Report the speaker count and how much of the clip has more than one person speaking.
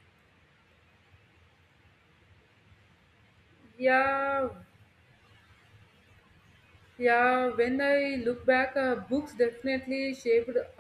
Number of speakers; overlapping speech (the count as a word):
one, no overlap